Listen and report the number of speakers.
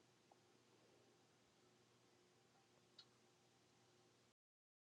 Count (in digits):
0